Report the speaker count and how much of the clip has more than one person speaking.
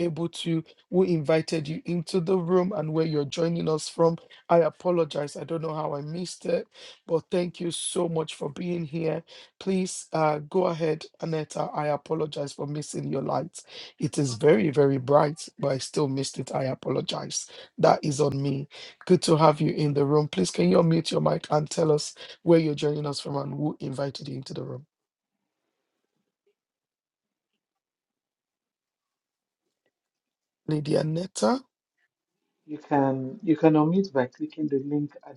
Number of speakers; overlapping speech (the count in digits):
2, no overlap